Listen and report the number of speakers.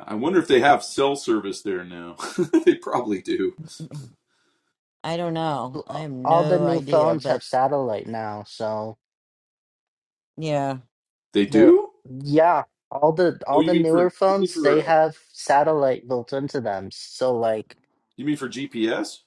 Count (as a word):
three